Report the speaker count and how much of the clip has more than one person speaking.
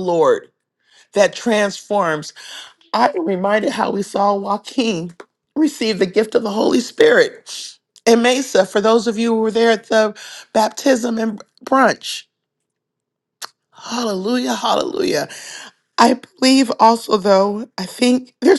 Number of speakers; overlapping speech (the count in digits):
1, no overlap